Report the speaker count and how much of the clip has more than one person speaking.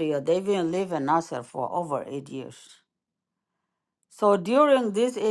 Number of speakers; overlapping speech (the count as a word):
one, no overlap